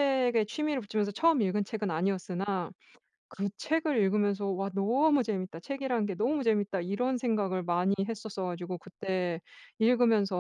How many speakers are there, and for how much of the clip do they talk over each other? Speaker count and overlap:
1, no overlap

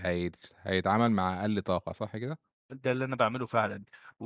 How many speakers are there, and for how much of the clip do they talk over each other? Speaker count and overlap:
2, no overlap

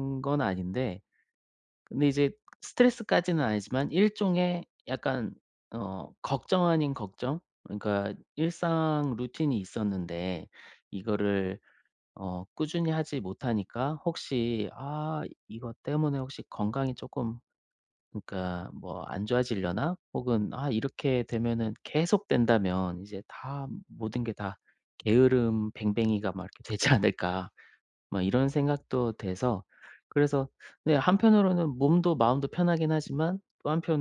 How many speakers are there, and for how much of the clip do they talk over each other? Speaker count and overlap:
1, no overlap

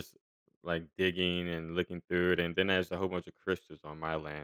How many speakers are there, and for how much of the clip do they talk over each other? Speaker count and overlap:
1, no overlap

